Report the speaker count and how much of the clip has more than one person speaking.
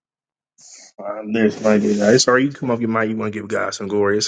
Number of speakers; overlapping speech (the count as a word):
one, no overlap